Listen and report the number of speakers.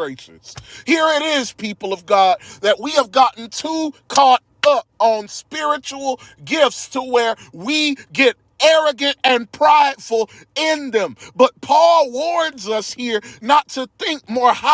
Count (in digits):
1